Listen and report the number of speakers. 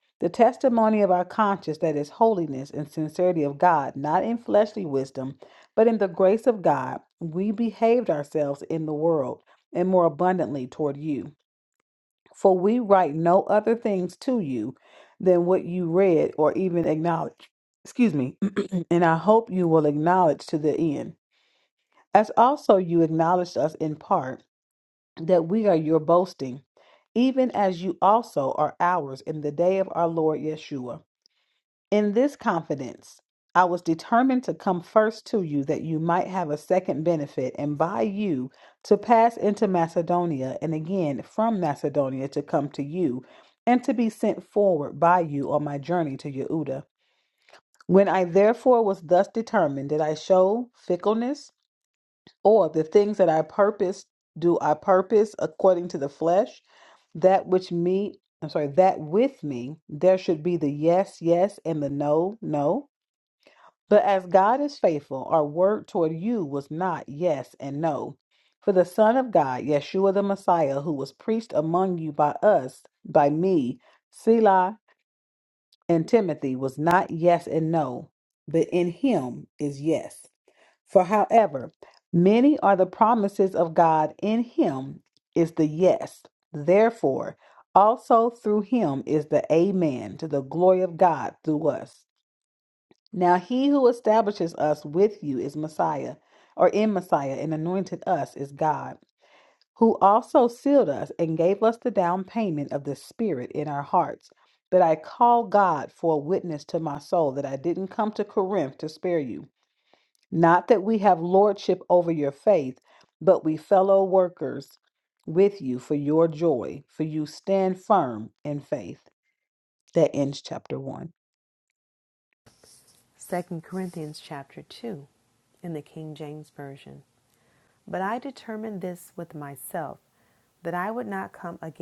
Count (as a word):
two